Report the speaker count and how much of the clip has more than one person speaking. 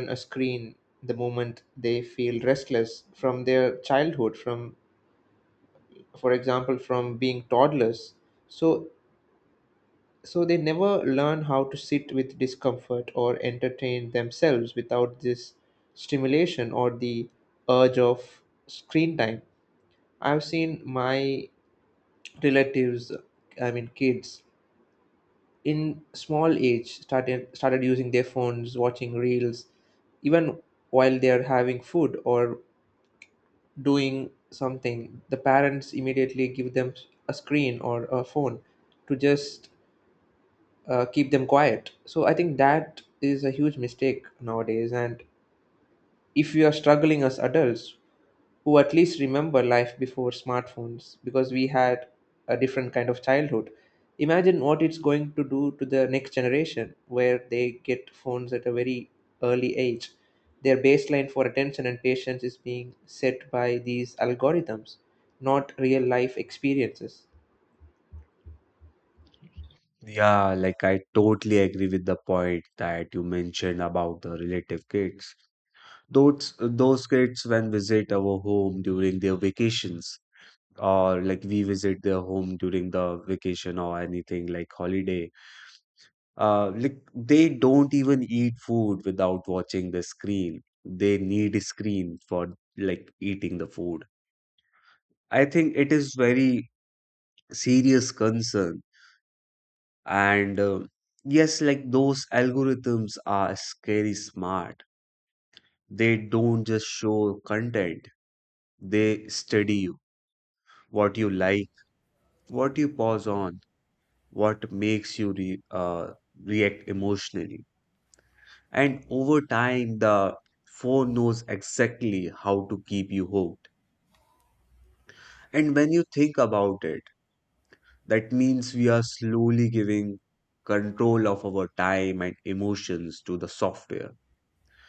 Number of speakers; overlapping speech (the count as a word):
two, no overlap